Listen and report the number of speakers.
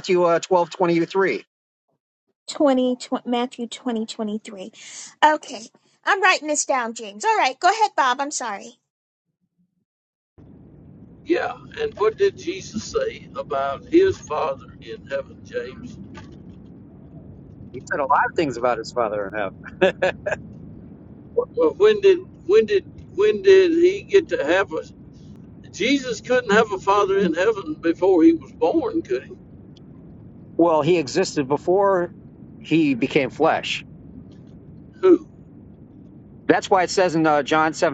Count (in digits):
3